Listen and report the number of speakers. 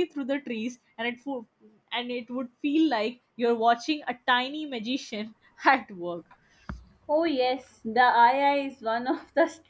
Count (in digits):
2